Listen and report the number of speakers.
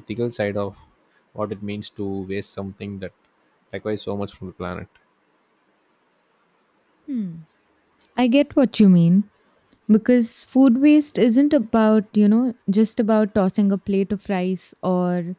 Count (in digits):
2